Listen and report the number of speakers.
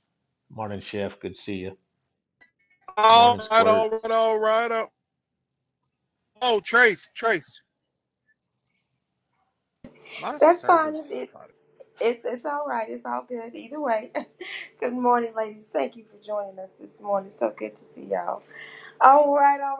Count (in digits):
3